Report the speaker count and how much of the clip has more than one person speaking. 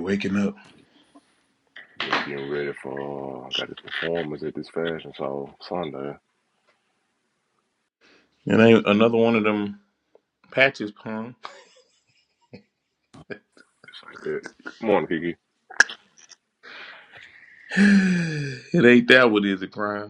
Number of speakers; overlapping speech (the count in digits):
2, no overlap